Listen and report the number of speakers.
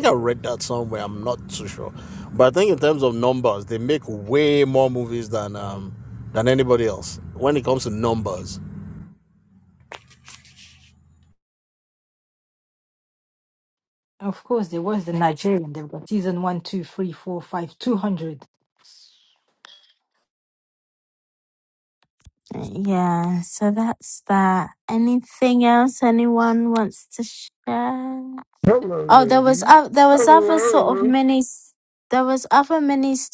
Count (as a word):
four